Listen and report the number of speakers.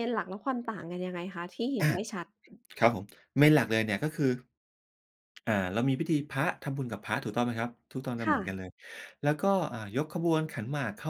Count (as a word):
two